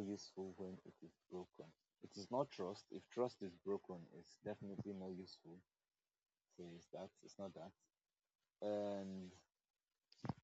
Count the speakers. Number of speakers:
one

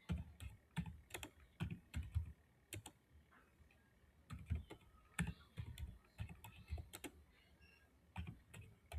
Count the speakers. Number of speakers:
zero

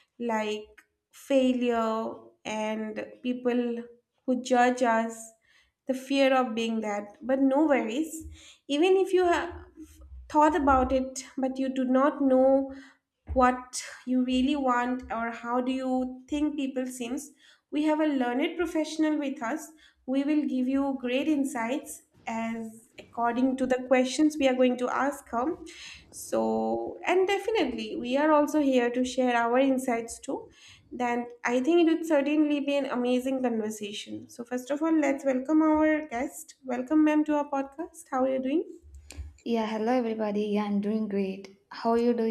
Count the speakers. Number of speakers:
two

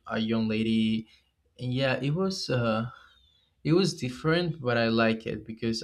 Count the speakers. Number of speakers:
one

